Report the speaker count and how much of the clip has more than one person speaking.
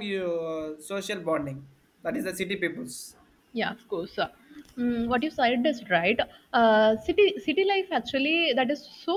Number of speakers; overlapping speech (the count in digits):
2, no overlap